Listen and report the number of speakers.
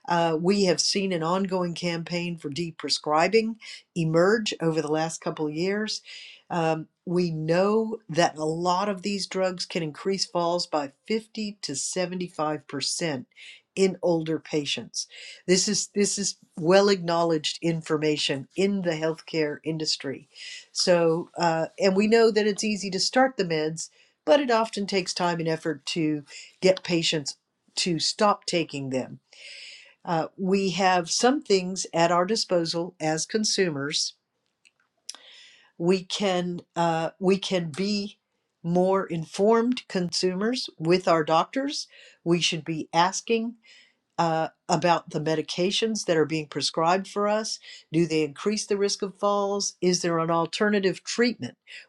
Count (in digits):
1